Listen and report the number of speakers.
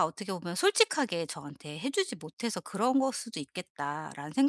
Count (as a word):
one